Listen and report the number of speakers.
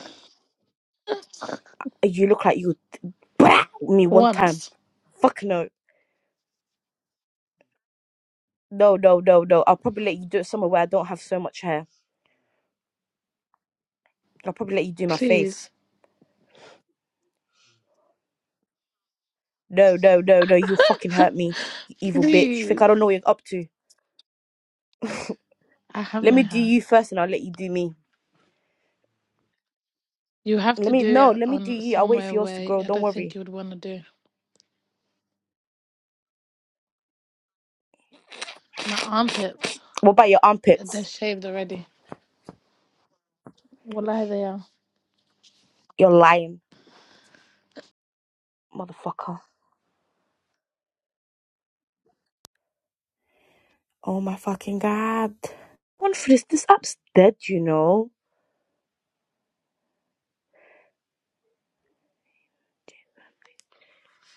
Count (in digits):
2